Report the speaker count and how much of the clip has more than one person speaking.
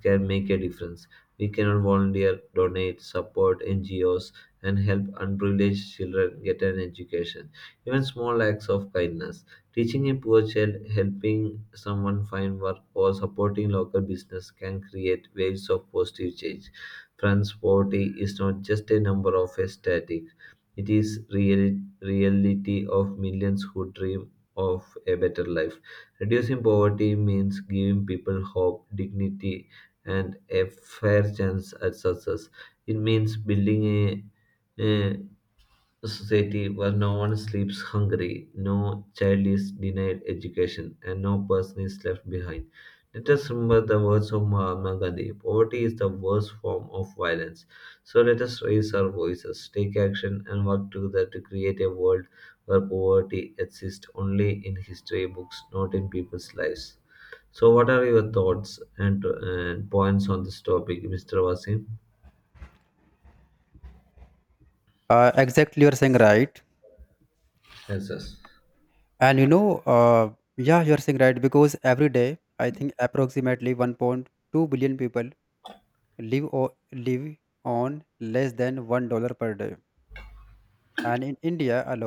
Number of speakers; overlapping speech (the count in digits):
2, no overlap